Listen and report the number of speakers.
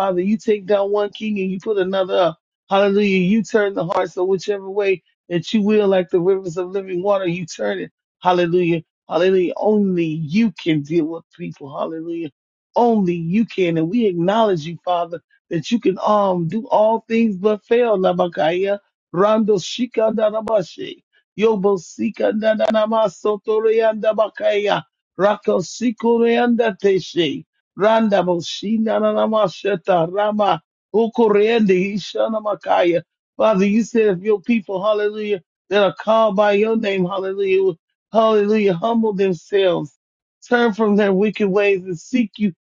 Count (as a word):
one